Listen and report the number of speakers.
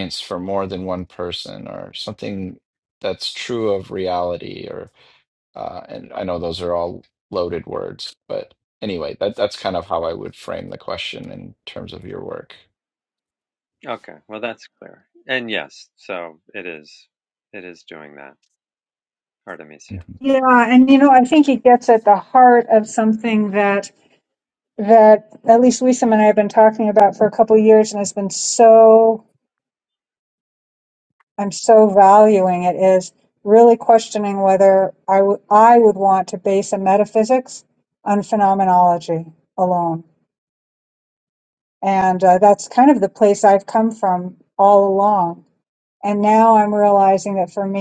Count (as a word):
three